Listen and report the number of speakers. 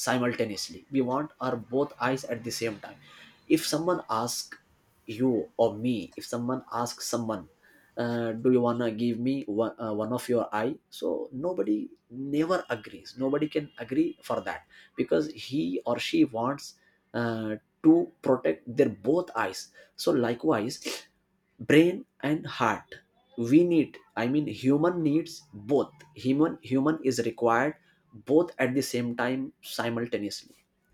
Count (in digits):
1